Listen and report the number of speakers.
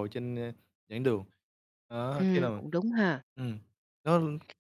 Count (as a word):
two